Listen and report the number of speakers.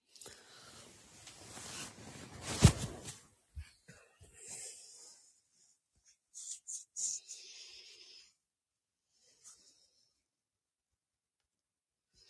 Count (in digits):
0